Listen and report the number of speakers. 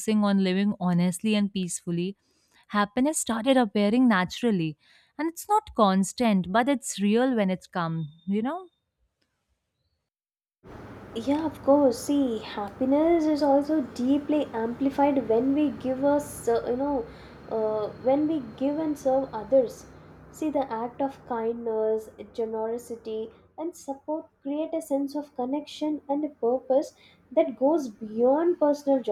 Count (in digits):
2